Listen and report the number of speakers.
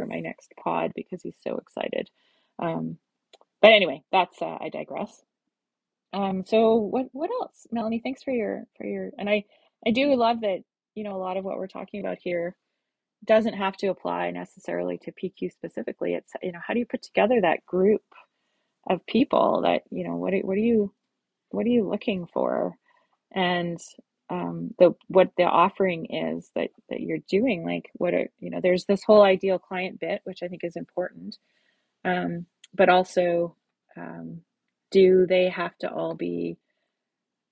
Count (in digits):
1